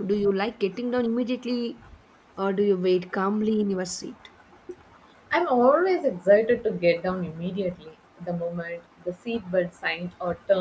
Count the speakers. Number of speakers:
2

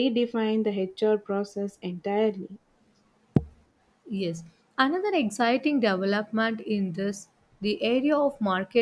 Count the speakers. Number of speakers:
2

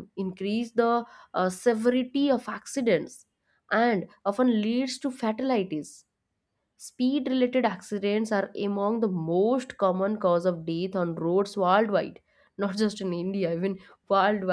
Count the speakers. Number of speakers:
1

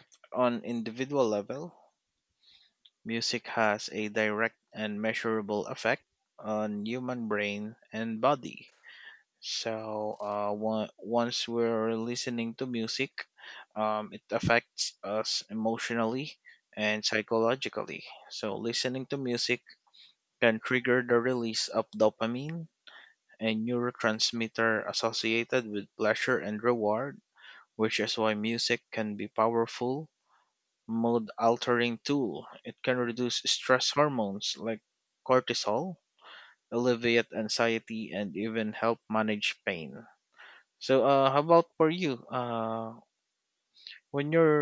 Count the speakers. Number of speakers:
1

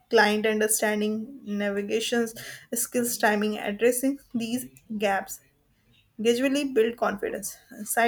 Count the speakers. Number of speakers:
1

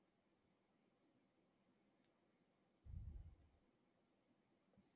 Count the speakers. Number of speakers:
0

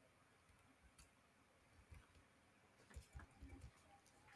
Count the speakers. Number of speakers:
0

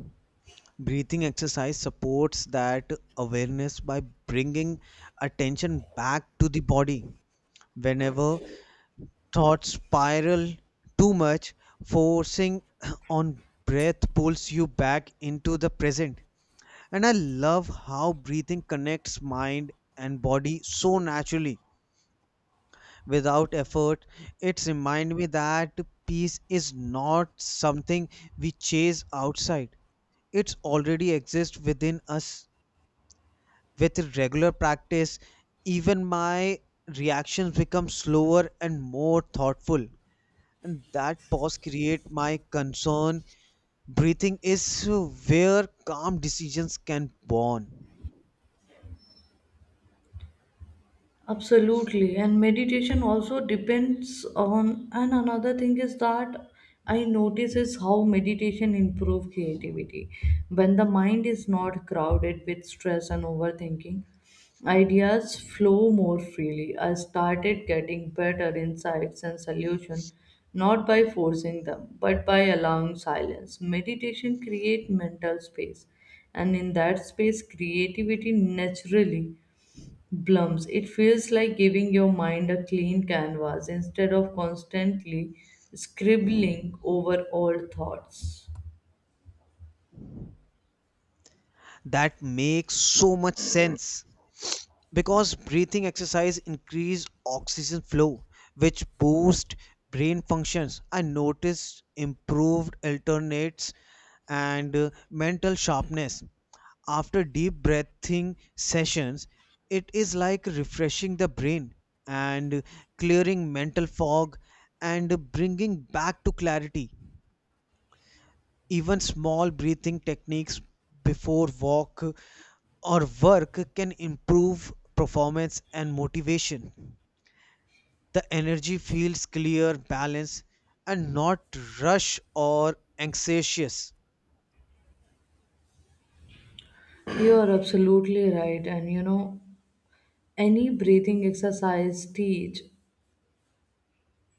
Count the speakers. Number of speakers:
2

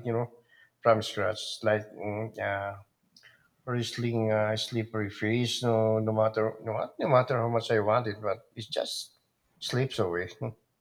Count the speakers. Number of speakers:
1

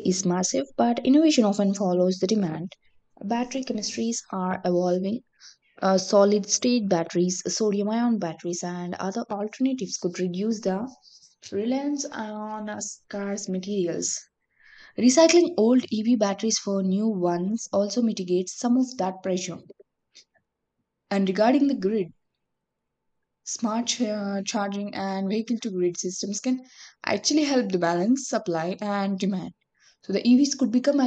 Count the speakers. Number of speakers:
1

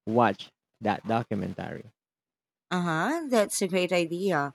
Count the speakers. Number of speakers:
2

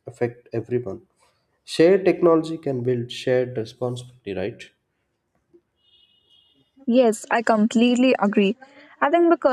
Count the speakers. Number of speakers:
2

